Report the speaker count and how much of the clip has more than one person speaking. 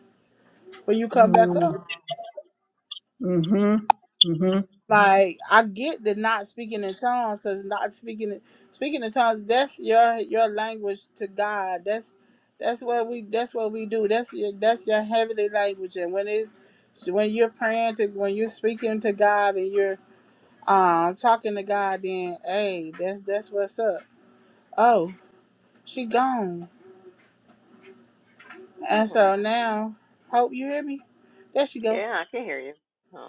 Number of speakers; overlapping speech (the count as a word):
three, about 3%